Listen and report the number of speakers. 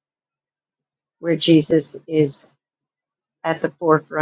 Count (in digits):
1